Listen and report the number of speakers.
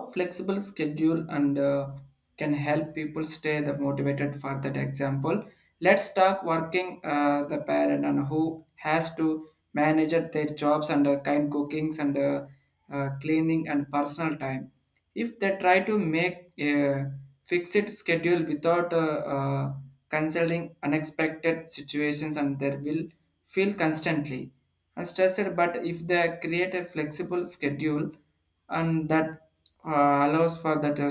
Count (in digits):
1